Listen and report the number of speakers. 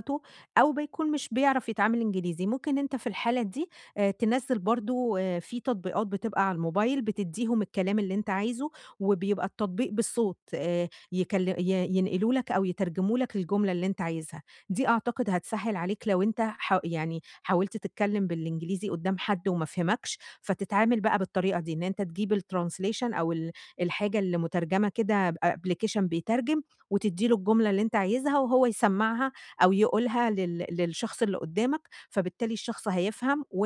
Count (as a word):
one